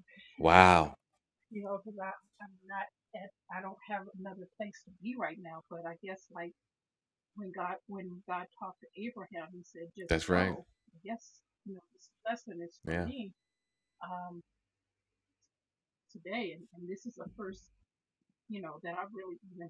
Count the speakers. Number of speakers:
two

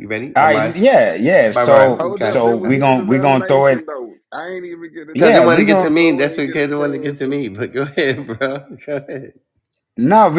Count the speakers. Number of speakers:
three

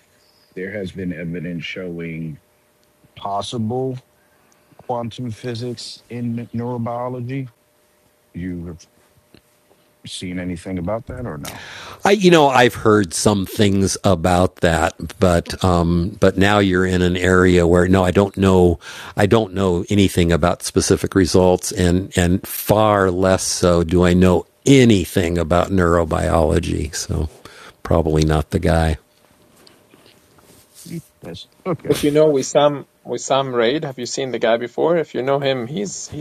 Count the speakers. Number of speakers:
three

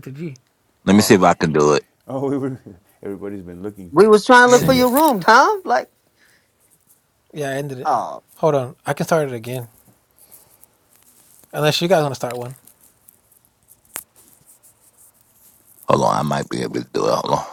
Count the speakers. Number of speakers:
four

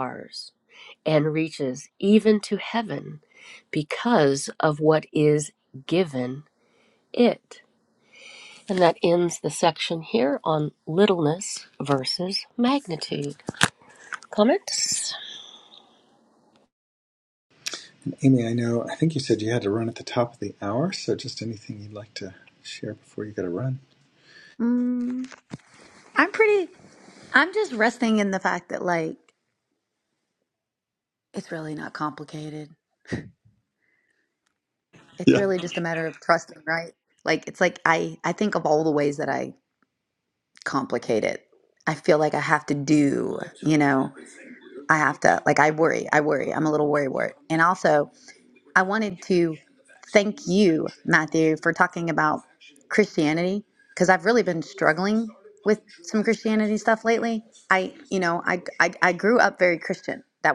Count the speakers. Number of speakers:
three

